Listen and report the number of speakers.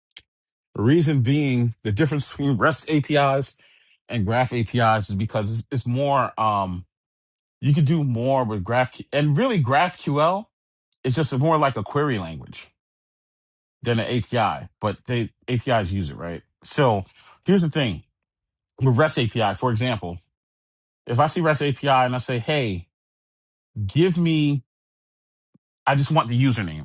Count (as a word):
one